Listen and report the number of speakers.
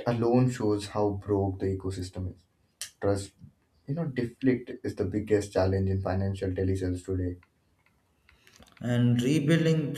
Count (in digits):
2